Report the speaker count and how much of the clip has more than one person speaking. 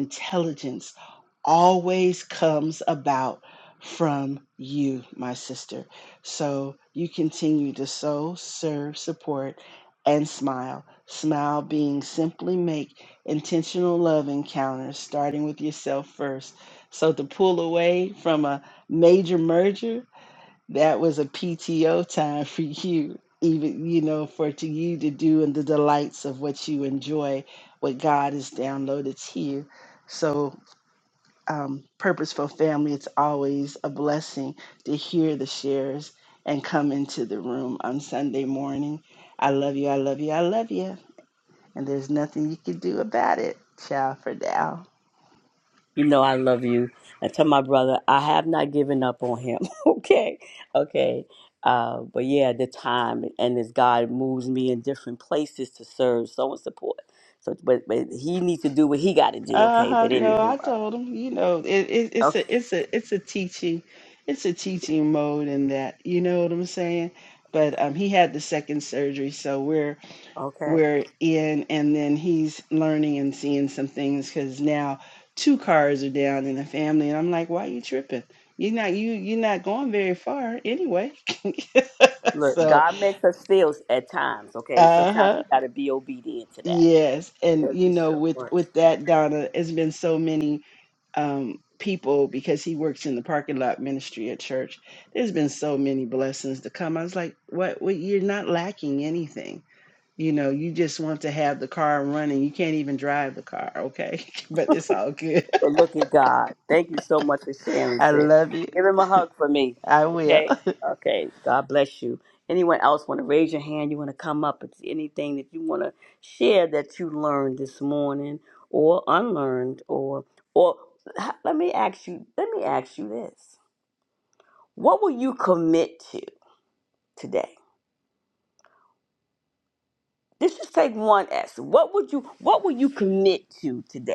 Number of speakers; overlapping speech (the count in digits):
2, about 4%